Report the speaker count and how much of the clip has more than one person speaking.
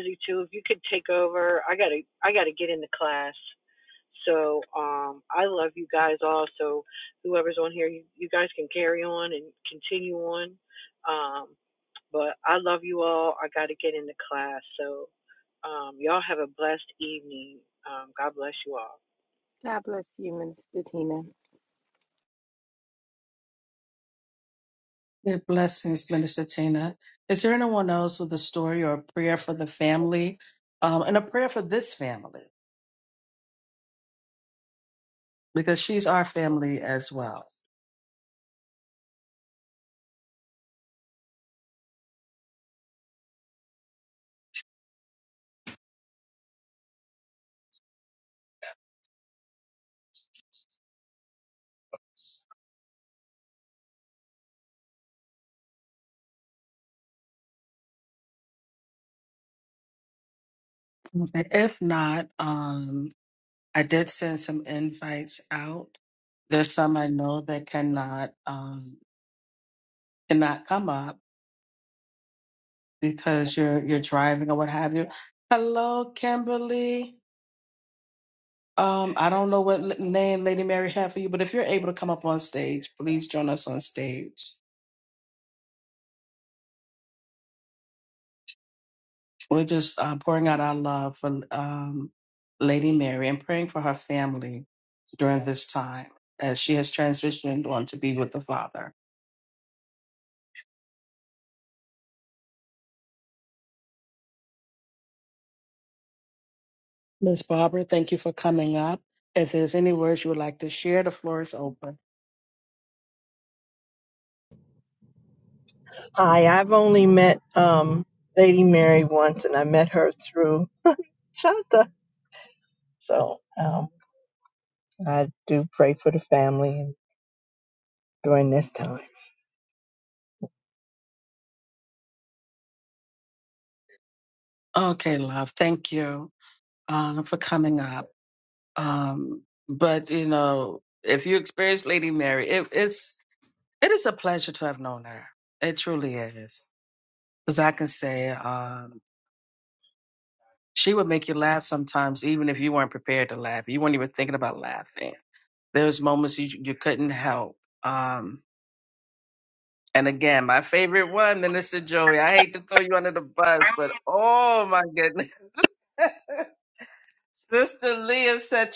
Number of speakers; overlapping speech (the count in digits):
4, no overlap